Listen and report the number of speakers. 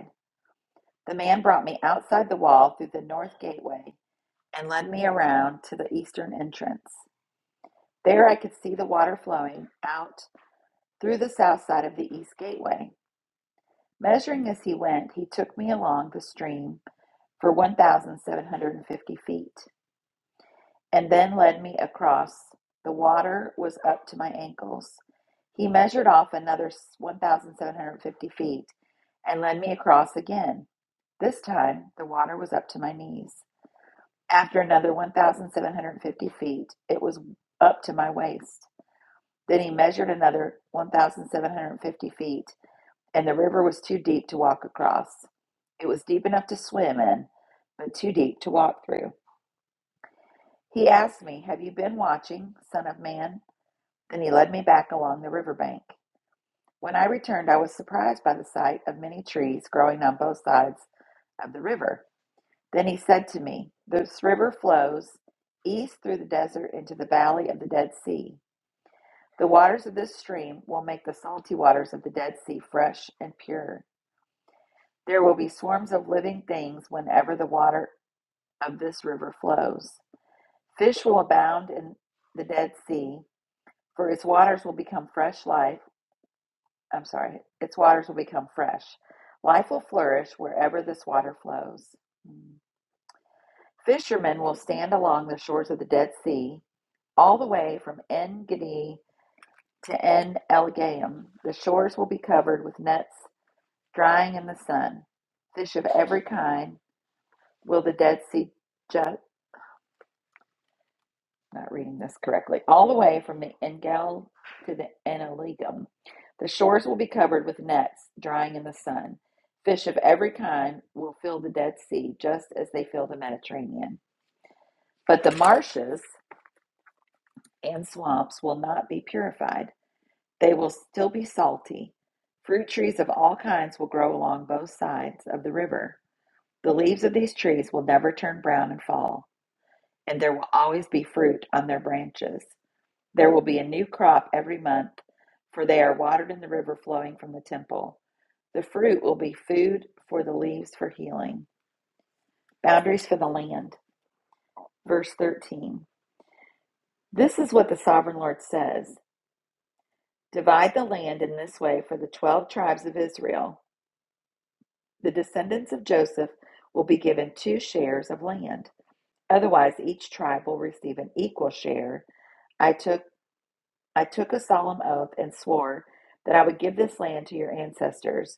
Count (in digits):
1